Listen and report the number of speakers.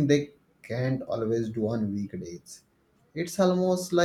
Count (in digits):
1